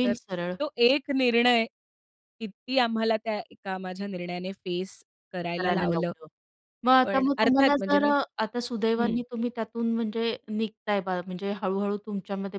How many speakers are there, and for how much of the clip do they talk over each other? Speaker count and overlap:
two, about 16%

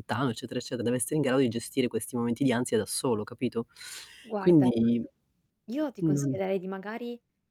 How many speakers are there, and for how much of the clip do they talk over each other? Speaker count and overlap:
two, about 9%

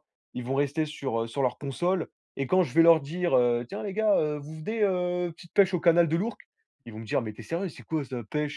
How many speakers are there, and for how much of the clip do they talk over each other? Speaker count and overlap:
one, no overlap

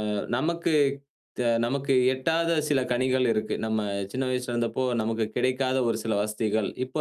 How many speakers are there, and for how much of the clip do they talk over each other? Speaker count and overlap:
one, no overlap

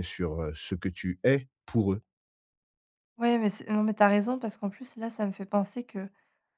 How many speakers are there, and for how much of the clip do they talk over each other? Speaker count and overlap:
two, no overlap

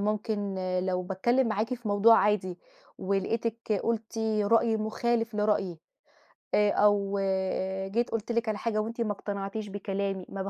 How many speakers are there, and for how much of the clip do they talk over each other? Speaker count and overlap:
one, no overlap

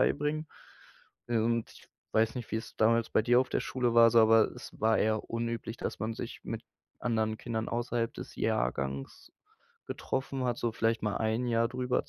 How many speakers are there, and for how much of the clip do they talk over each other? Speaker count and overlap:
one, no overlap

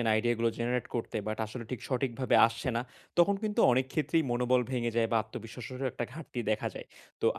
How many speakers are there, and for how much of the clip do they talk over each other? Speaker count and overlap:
one, no overlap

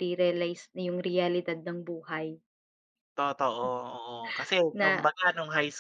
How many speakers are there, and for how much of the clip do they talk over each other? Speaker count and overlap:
two, about 6%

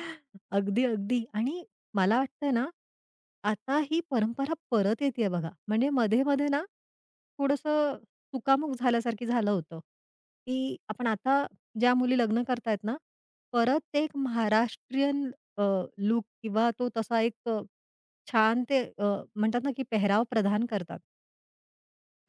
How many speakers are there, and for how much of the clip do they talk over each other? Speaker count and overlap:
one, no overlap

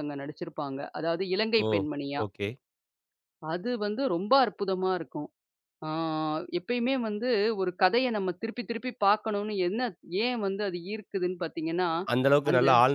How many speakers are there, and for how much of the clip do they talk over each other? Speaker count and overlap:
two, about 3%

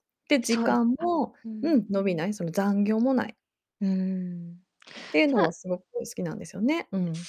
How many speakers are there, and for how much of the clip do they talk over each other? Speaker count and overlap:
two, about 12%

